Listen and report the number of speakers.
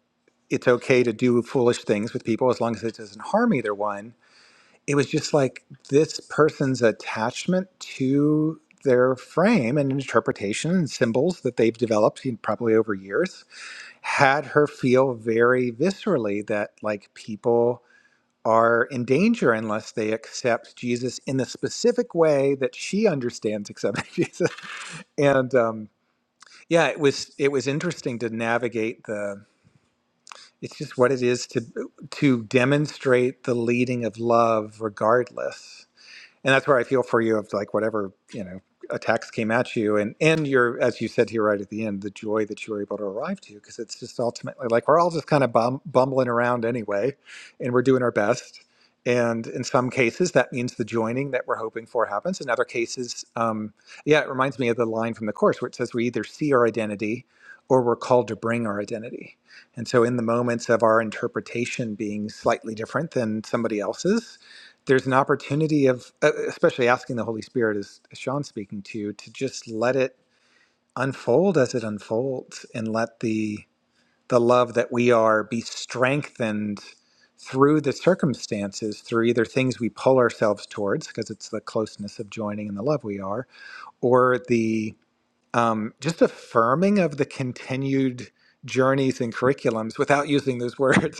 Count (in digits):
1